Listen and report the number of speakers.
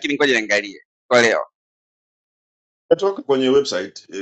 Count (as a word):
two